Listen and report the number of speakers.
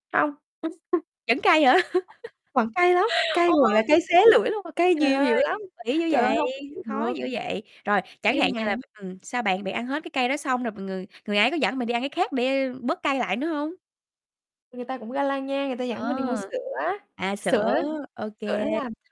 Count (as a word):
two